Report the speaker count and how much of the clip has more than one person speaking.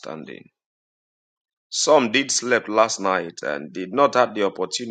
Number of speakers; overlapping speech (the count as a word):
one, no overlap